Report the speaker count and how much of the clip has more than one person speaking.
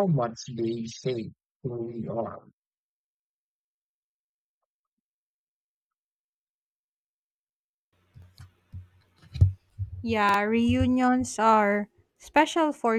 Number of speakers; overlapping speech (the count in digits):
2, no overlap